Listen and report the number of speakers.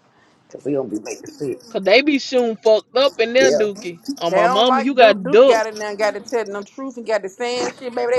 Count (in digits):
3